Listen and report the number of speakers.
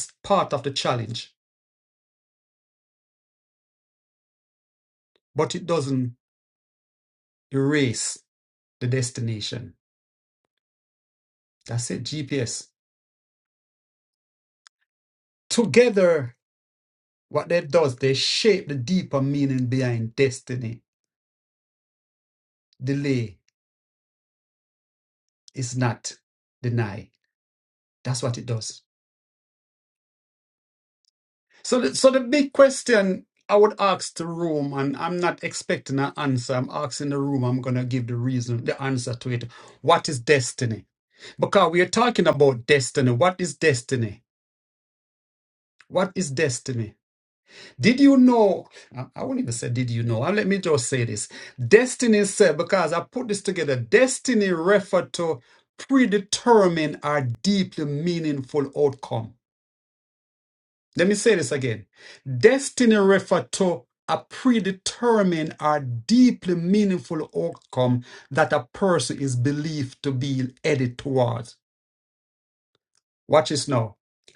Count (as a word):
one